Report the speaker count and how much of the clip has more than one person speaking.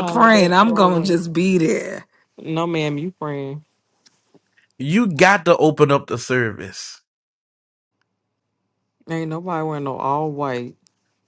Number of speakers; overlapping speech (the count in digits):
3, about 10%